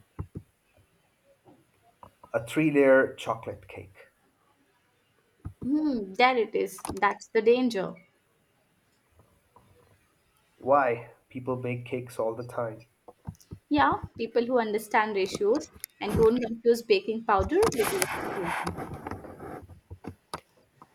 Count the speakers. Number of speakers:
two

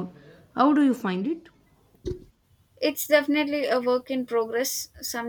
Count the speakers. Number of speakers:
two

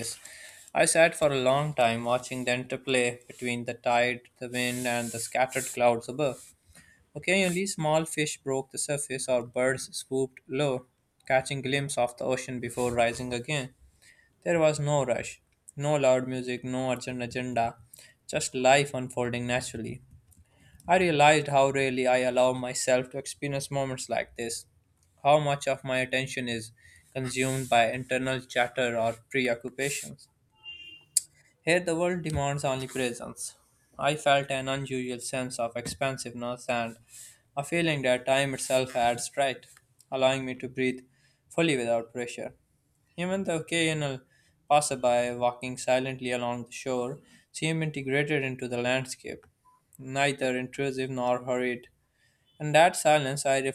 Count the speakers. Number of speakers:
one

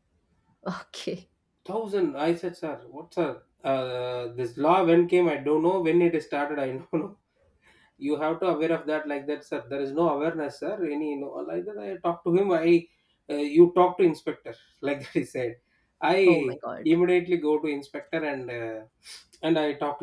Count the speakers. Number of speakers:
two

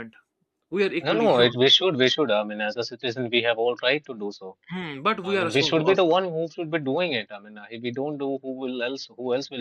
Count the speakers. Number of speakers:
two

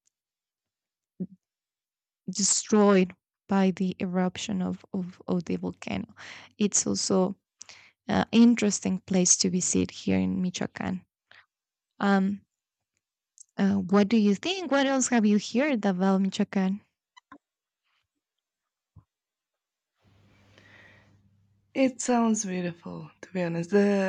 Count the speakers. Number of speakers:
two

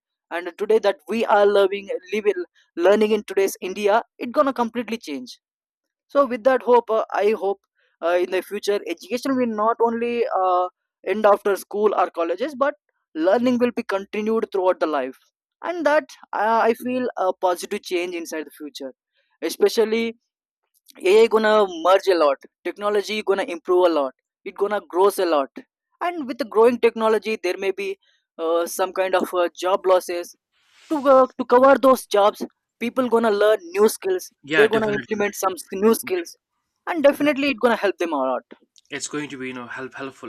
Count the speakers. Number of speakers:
two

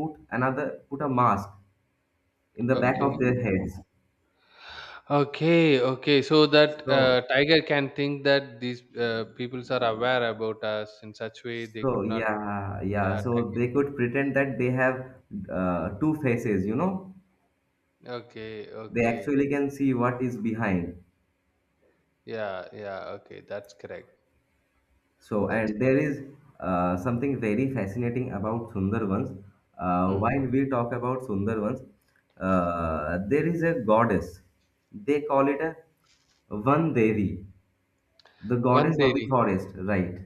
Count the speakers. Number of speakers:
two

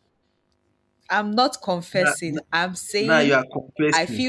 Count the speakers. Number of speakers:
two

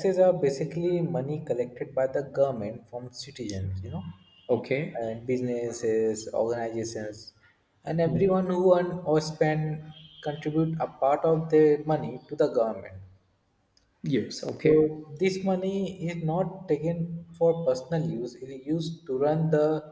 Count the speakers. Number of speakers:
two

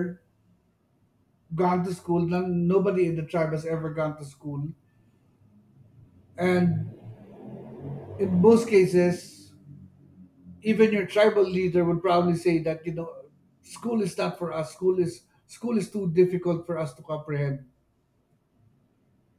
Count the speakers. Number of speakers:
one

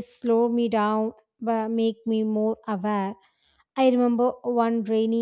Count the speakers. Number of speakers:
one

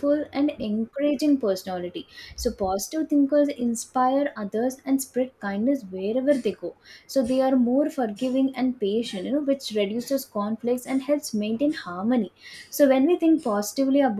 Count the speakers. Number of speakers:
one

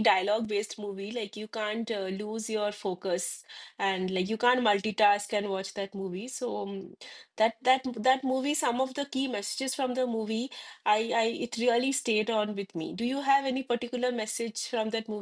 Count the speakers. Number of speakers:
one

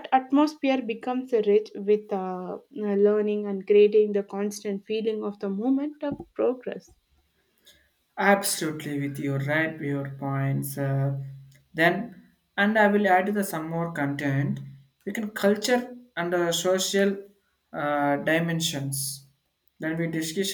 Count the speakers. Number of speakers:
two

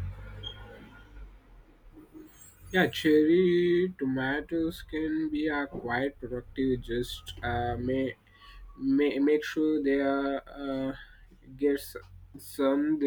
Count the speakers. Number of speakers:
one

